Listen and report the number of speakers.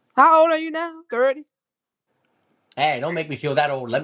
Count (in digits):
2